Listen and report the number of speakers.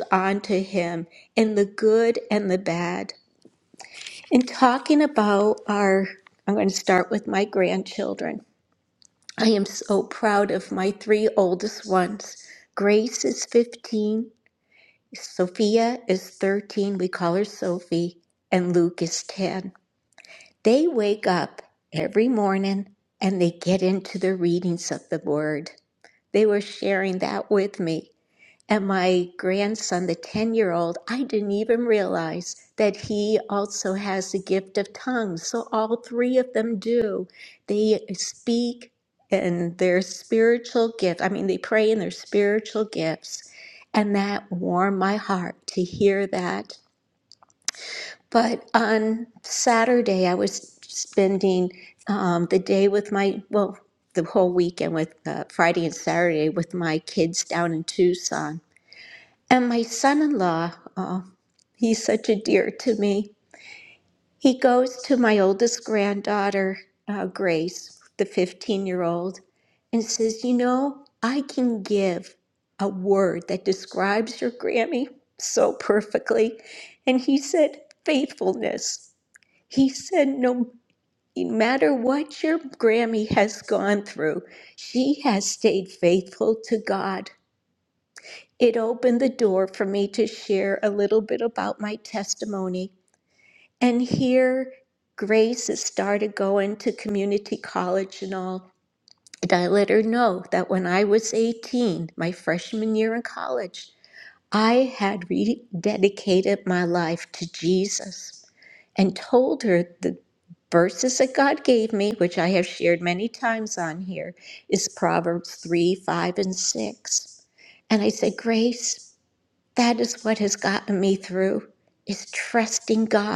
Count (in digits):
1